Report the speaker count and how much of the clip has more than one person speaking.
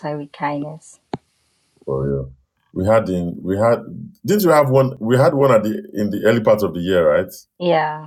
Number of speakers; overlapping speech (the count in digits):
2, no overlap